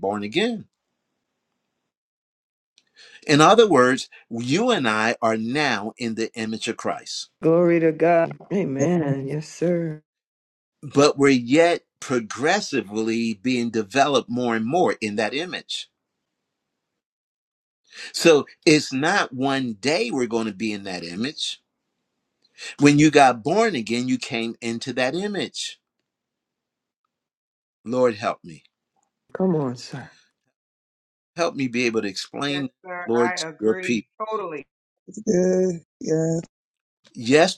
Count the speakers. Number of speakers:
4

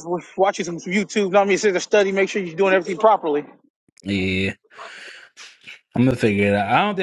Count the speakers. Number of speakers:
2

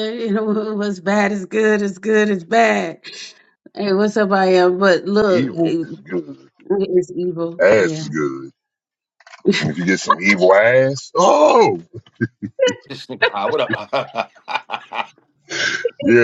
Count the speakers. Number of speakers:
3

